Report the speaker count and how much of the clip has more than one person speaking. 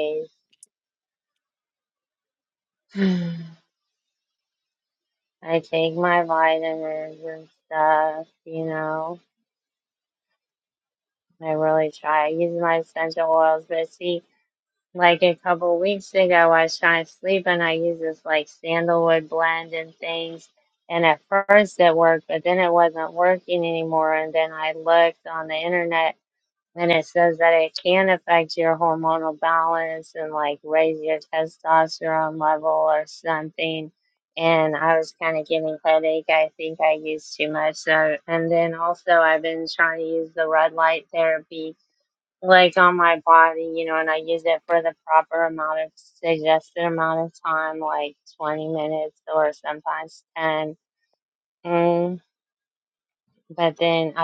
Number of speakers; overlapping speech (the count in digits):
1, no overlap